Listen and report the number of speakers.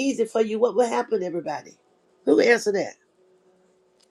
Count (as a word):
one